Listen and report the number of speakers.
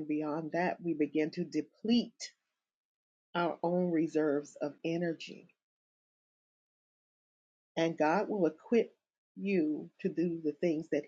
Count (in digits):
1